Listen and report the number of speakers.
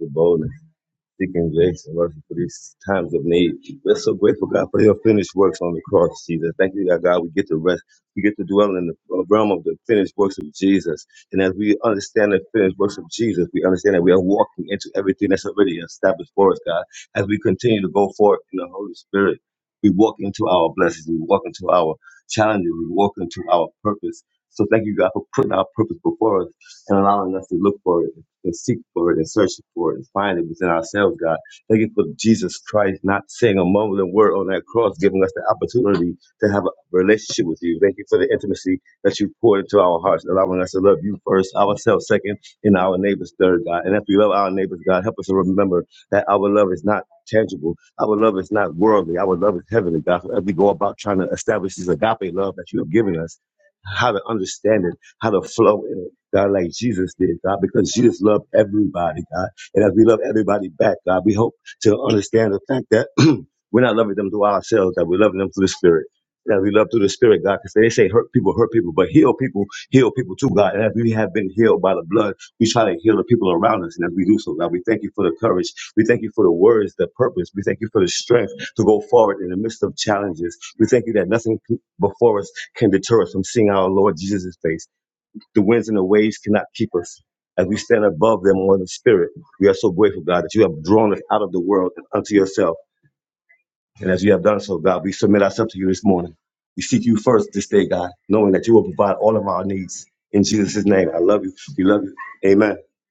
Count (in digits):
1